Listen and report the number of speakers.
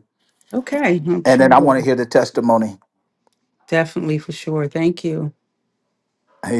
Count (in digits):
2